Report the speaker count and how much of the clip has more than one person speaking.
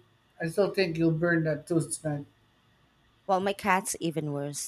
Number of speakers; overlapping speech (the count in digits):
2, no overlap